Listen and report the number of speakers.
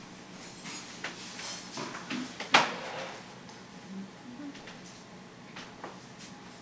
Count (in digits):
0